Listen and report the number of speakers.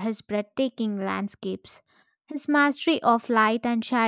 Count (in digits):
1